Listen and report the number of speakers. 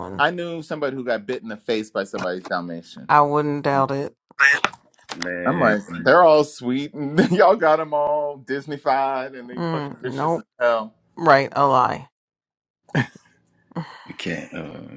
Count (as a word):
three